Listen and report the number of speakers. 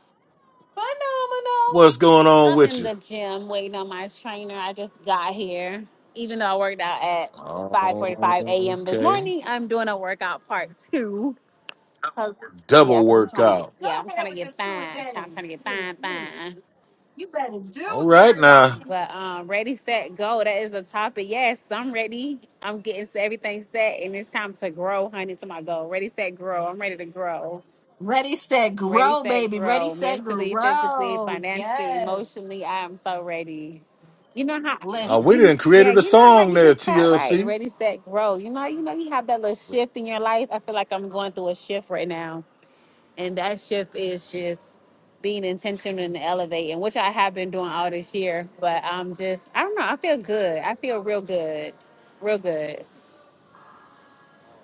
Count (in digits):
3